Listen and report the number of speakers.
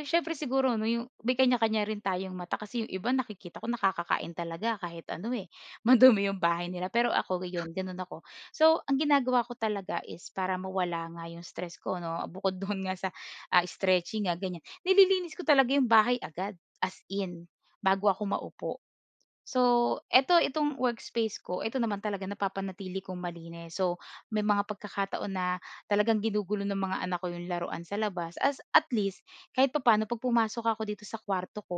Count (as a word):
one